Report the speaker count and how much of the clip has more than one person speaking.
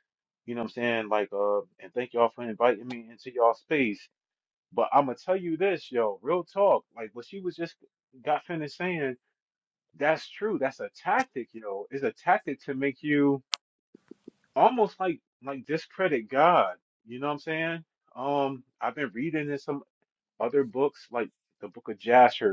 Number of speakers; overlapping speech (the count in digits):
1, no overlap